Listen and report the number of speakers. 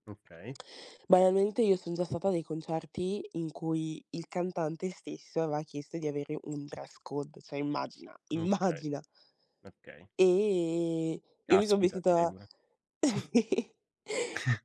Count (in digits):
2